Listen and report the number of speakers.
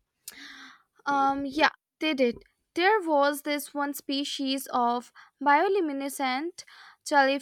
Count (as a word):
one